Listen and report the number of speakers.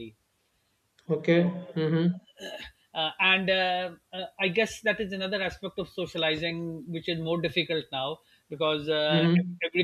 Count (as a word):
two